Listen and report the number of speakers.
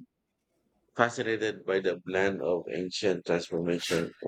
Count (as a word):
one